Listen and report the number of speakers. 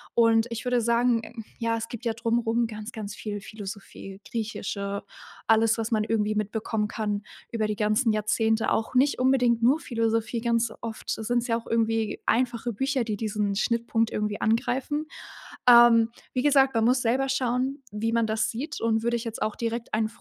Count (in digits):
1